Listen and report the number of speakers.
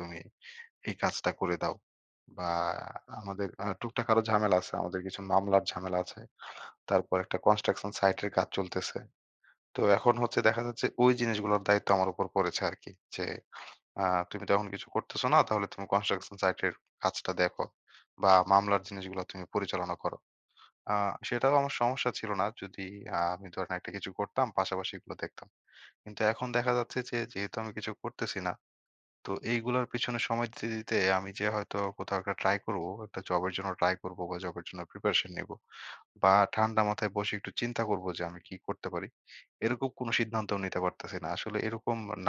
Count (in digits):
1